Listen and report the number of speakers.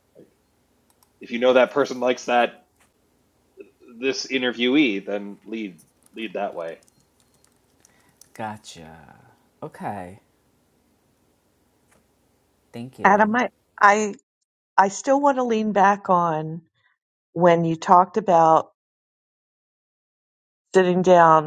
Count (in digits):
3